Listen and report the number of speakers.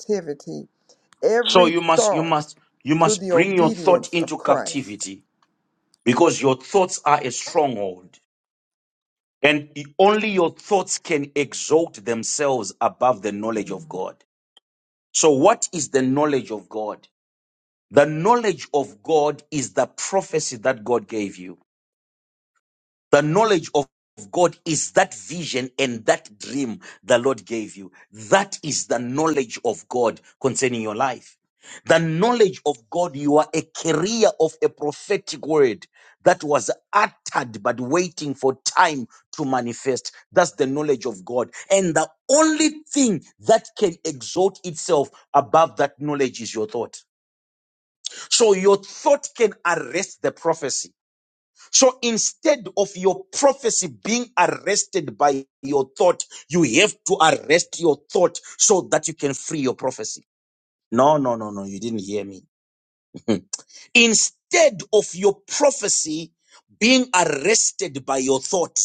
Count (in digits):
2